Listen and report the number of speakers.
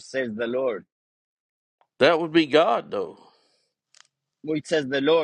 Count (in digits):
2